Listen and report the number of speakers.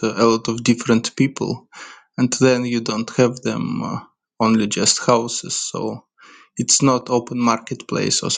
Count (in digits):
1